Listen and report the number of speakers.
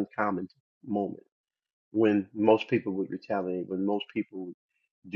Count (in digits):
1